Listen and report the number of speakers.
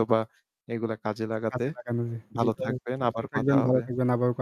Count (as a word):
two